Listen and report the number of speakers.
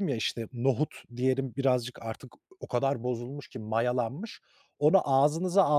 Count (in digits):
1